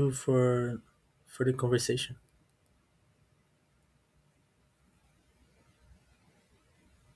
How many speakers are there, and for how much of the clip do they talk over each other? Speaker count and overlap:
1, no overlap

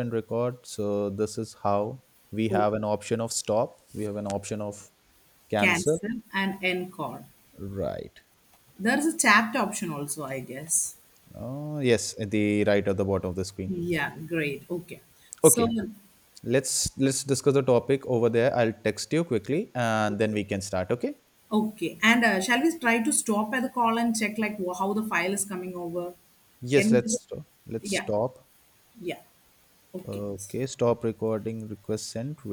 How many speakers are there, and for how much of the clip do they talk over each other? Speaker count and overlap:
2, about 5%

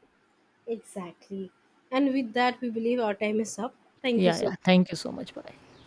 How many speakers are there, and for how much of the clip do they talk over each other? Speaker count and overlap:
2, about 6%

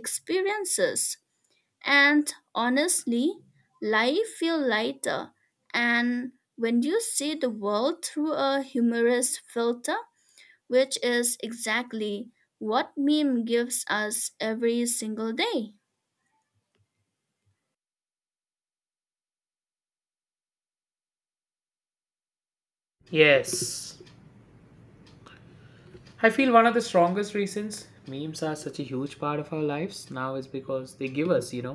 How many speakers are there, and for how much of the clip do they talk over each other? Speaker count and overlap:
2, no overlap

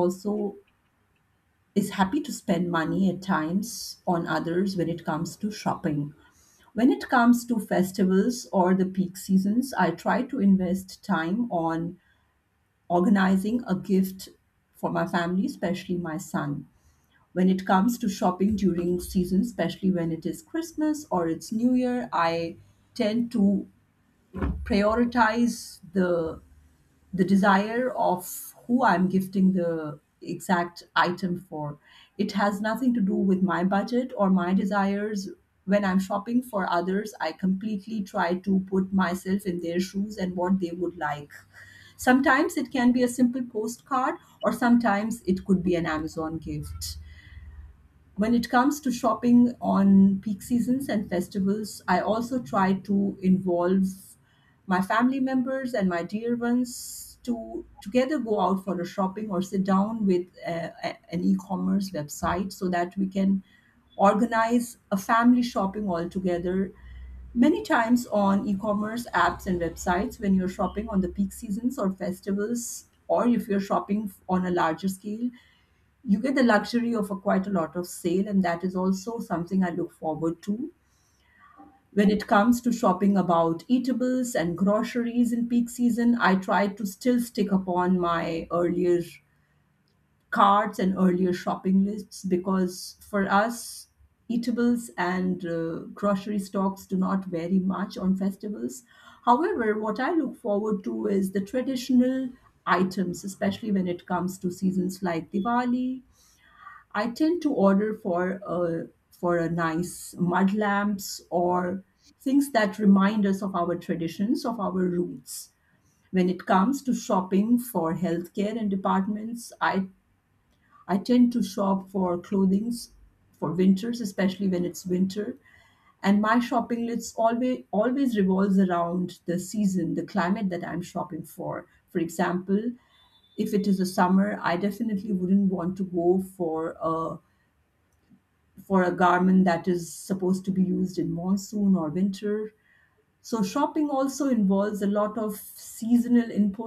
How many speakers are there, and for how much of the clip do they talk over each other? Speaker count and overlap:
1, no overlap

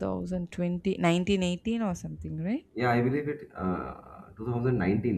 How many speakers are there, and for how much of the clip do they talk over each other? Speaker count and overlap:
2, no overlap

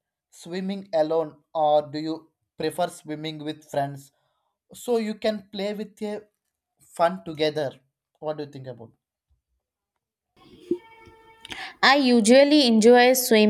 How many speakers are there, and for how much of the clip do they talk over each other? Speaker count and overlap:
2, no overlap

